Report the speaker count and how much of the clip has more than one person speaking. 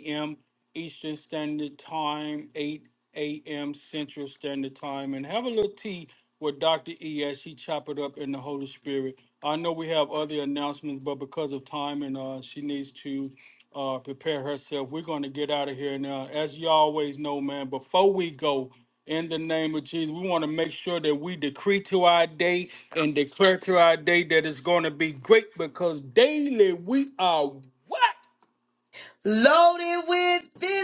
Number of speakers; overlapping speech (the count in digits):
2, no overlap